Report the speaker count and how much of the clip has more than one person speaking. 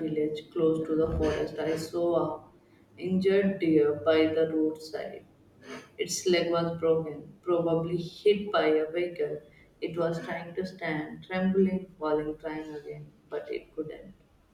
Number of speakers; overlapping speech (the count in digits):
1, no overlap